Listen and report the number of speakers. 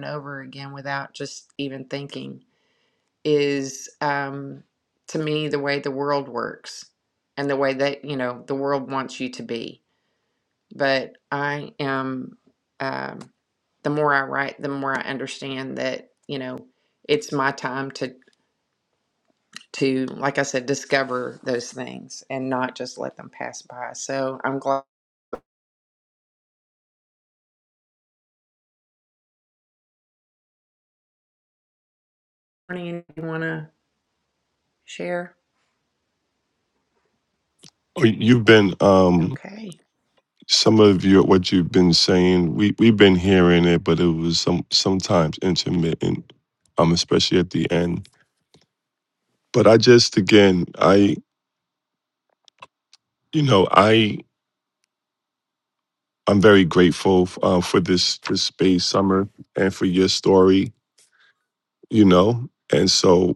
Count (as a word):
two